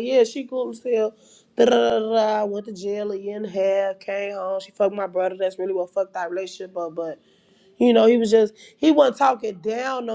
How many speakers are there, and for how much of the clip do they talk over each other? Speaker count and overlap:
one, no overlap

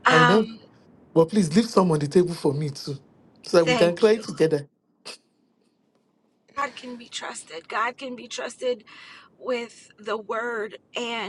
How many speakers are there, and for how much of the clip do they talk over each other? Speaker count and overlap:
two, about 9%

